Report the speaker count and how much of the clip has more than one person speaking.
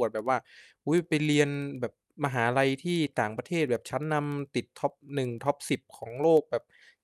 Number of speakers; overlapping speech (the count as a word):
one, no overlap